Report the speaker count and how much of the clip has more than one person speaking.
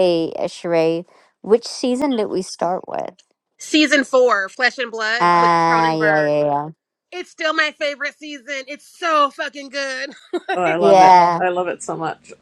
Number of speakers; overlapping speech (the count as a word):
three, about 16%